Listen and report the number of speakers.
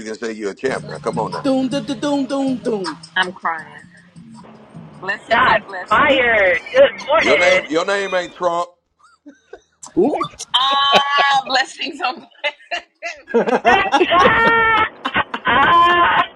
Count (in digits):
4